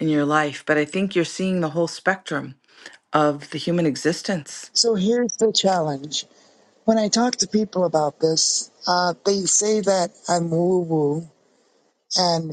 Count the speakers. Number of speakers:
two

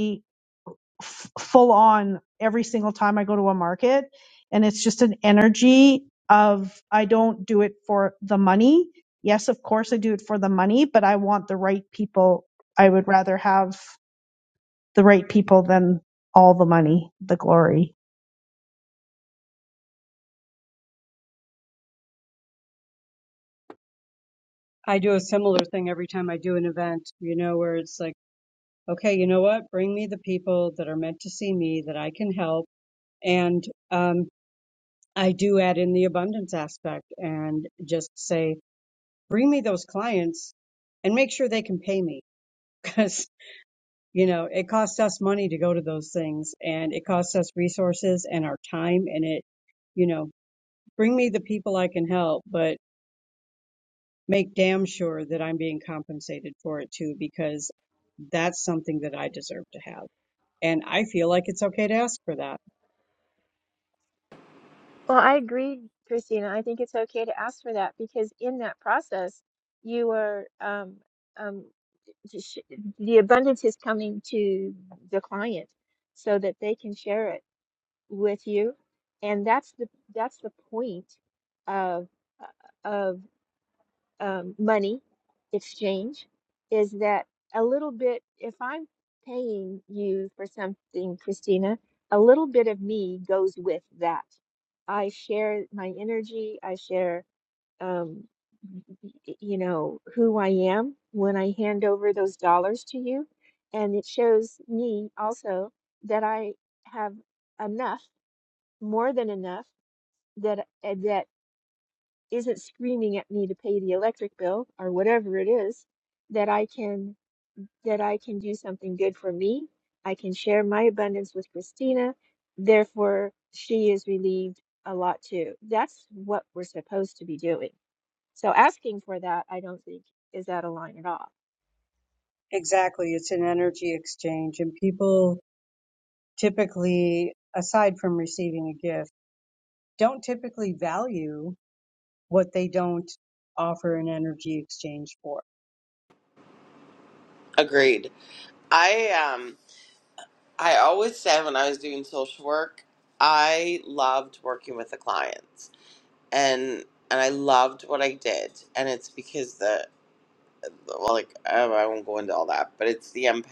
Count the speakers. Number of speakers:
four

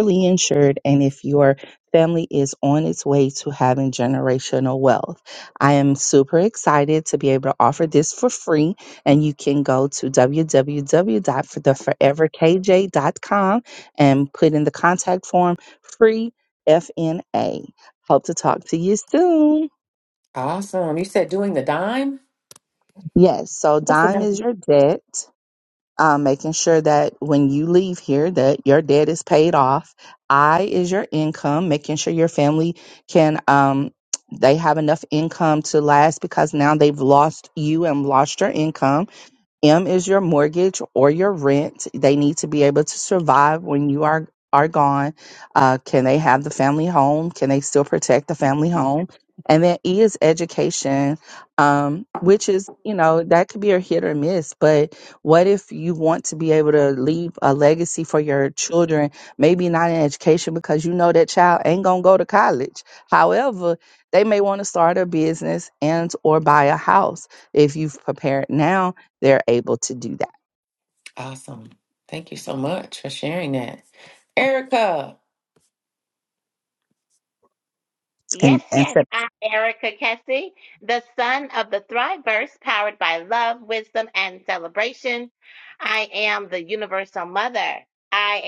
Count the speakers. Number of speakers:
three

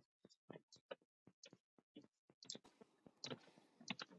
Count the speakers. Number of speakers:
zero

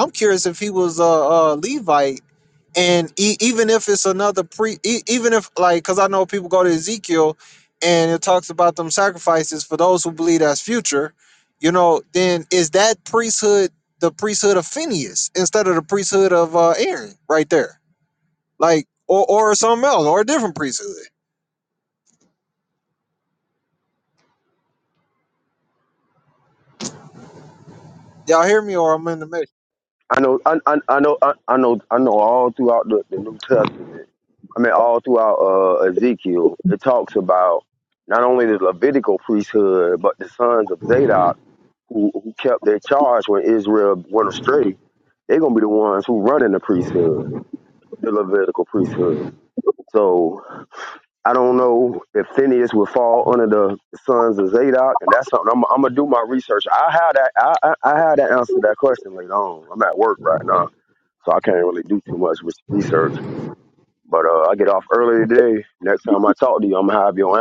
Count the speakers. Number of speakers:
two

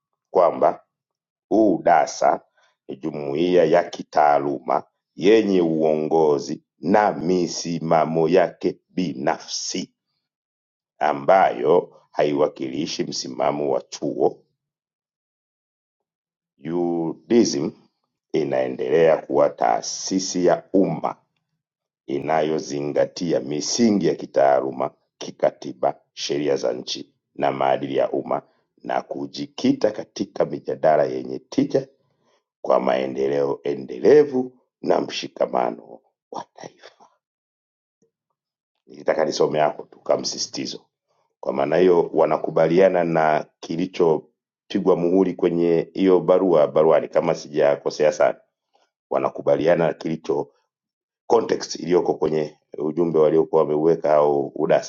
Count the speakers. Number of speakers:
one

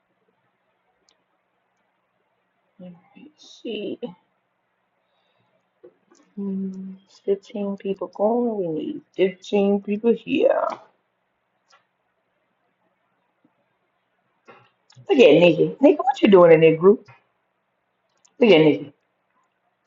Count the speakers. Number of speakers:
one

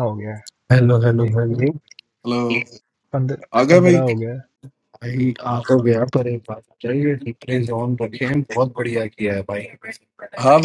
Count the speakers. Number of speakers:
three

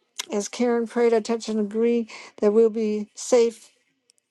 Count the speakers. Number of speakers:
one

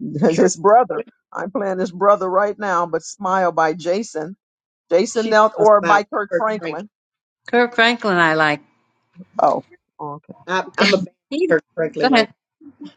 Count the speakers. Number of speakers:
three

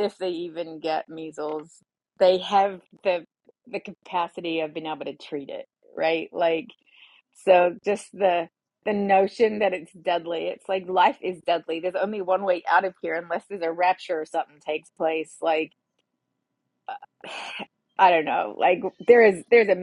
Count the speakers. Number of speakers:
one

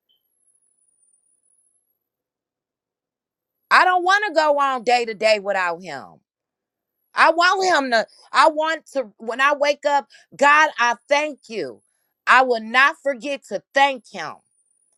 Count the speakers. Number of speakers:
one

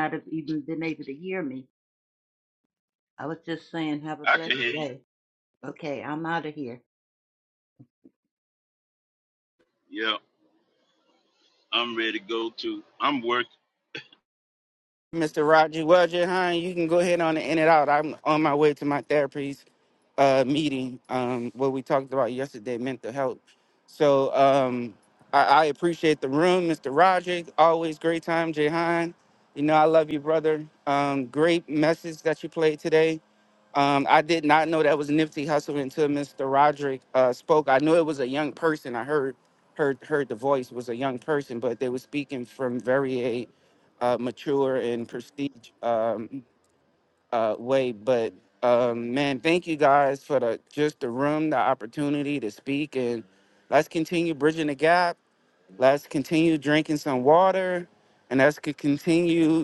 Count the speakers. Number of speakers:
three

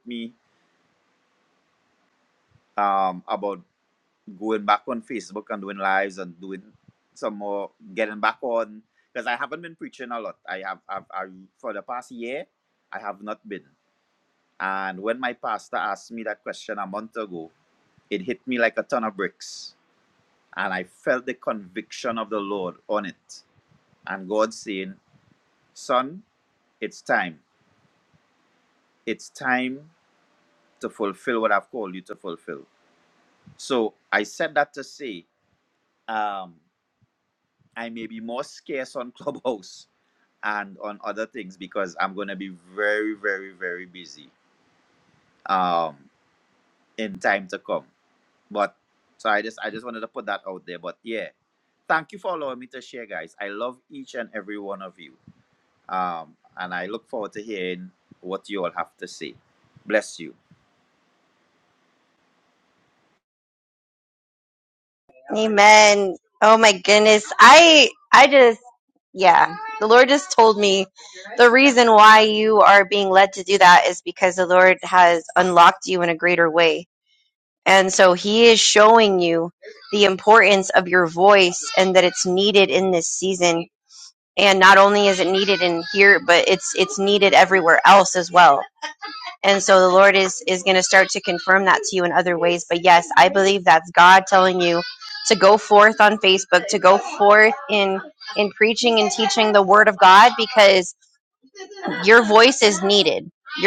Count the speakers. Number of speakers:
two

